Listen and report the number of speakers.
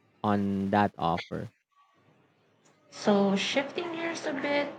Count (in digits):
2